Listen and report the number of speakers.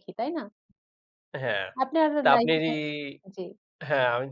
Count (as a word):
two